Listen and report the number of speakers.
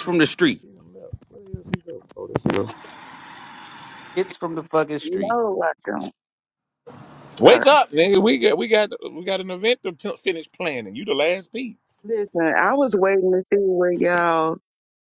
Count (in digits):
3